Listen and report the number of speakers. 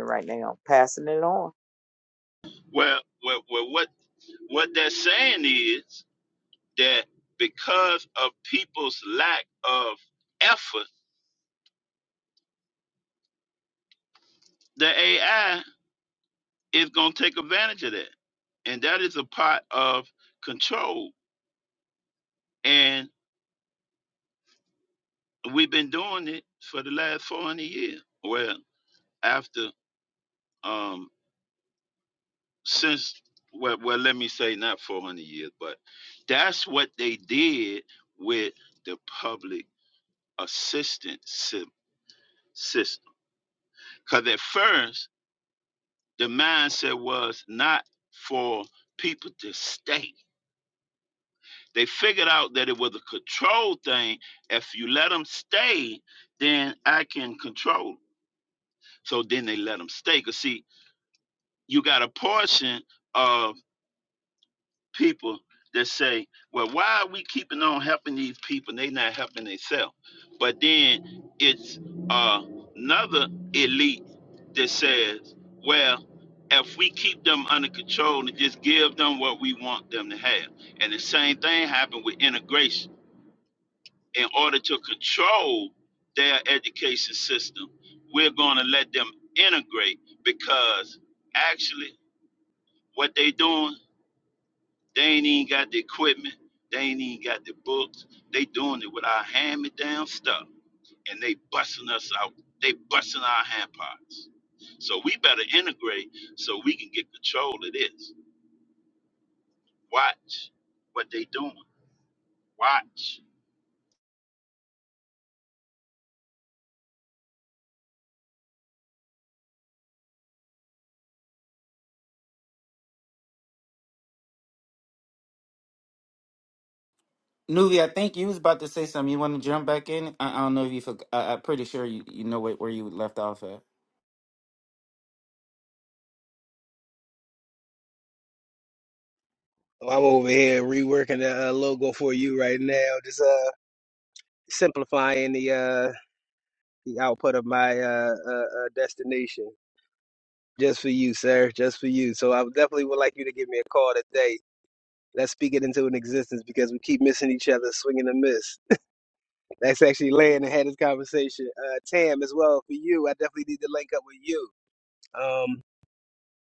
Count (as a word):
four